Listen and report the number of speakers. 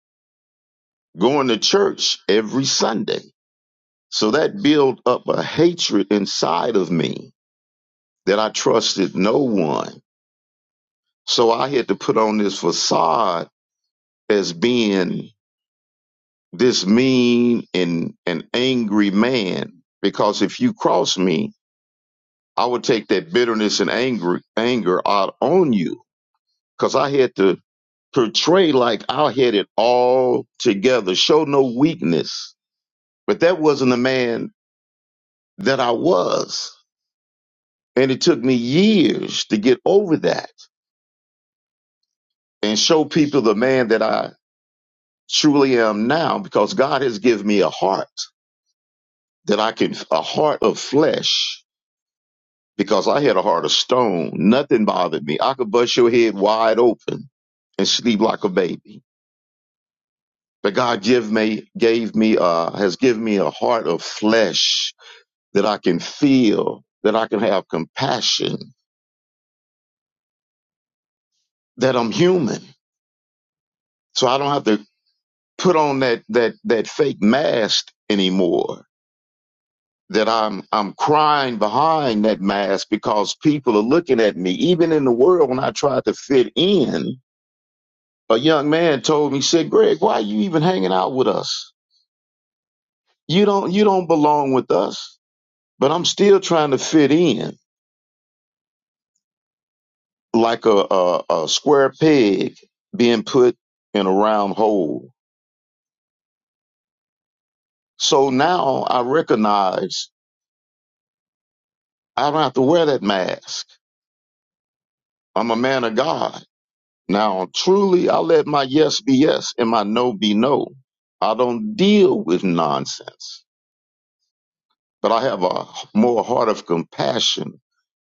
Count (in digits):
1